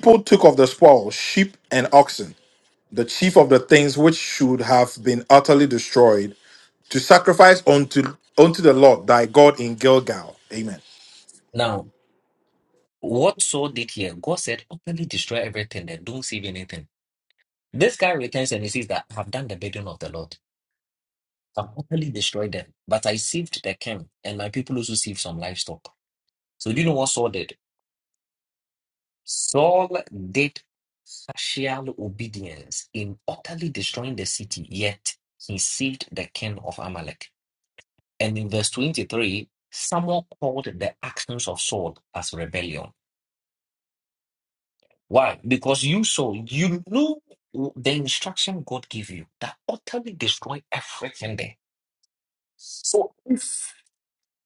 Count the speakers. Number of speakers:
2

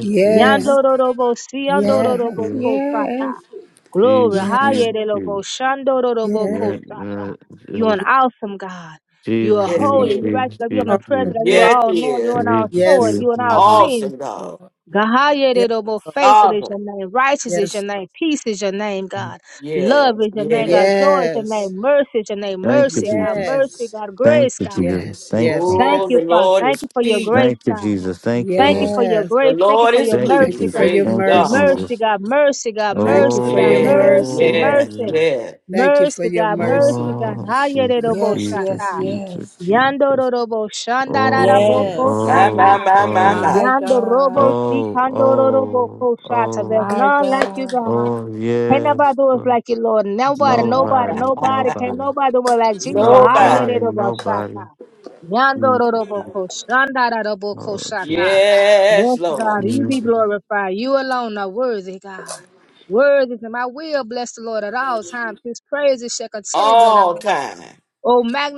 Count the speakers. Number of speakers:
4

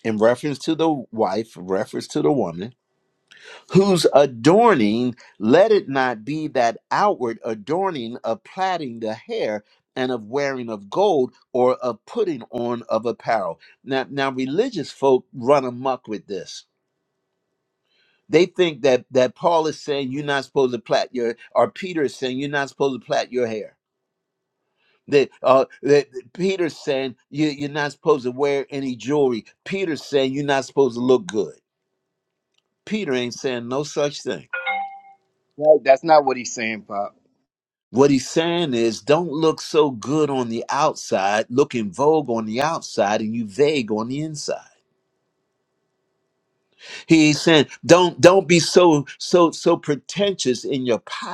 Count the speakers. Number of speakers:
2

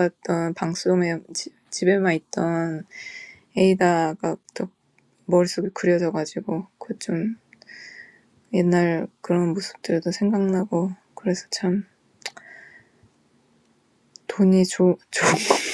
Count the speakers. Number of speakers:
1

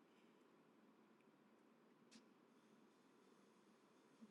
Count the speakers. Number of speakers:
0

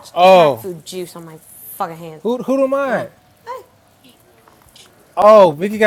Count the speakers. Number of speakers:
2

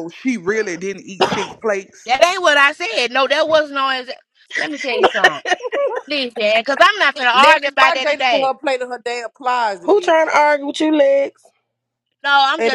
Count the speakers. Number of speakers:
4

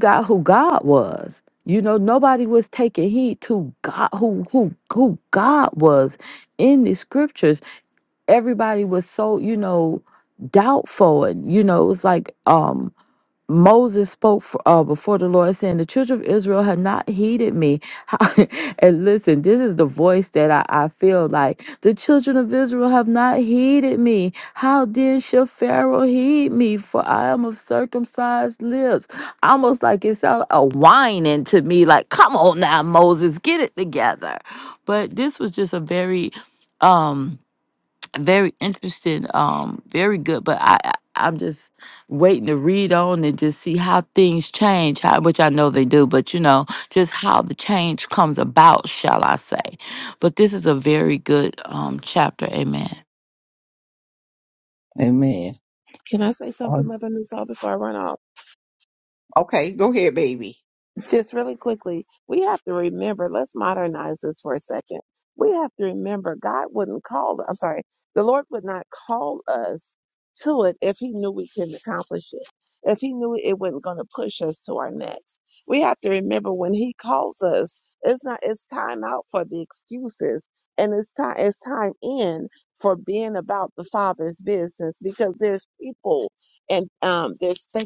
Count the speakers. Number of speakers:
3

